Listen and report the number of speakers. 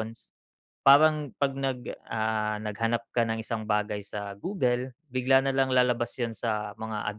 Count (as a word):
one